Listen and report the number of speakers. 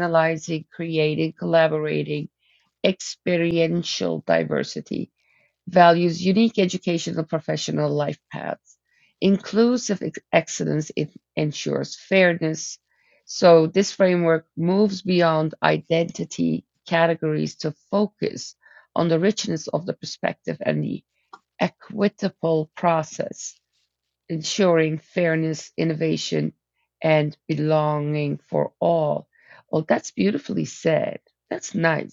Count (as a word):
one